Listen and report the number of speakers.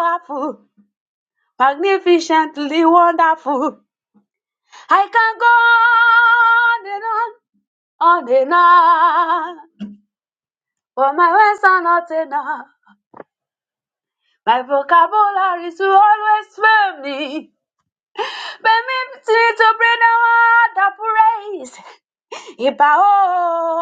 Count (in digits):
1